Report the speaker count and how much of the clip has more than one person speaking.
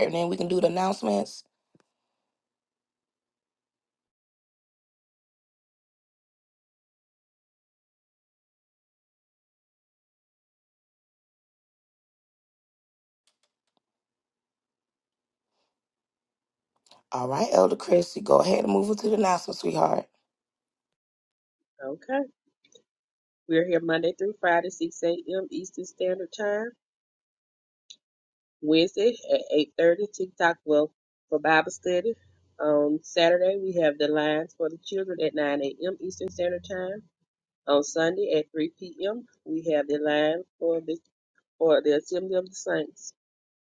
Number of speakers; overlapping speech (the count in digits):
2, no overlap